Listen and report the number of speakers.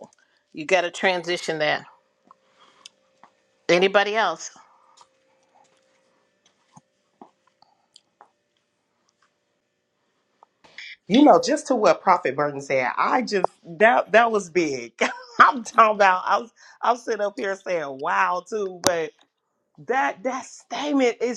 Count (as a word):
two